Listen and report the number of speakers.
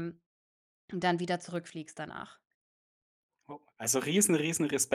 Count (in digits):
2